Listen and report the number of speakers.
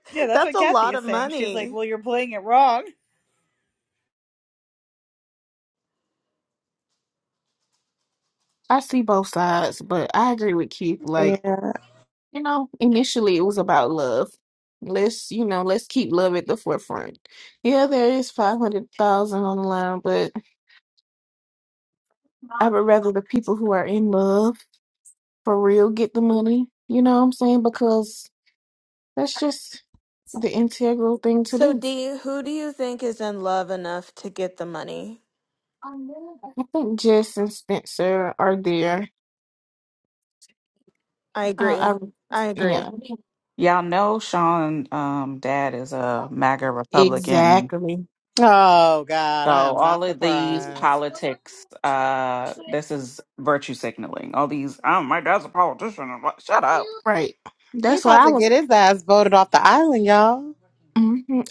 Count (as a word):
five